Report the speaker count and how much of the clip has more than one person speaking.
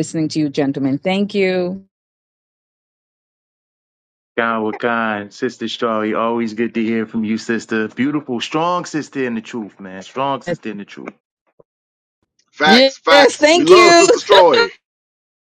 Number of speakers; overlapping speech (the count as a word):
three, about 9%